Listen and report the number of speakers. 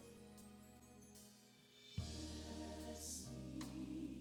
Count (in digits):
0